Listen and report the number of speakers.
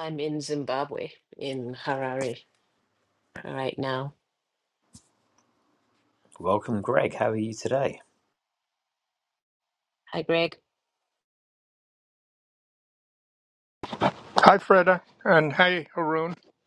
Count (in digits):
3